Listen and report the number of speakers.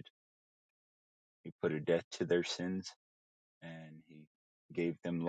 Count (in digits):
1